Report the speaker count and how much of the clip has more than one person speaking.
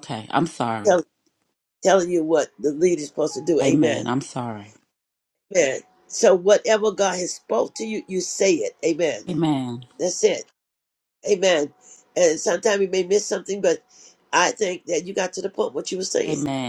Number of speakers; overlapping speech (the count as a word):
two, about 4%